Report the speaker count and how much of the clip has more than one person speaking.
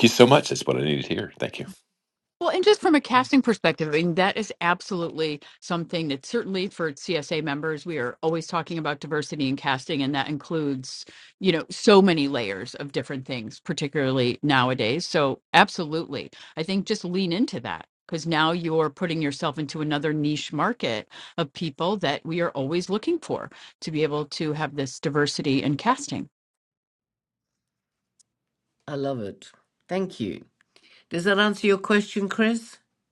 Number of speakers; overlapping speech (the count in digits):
3, no overlap